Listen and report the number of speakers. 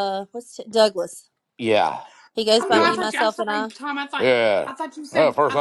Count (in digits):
3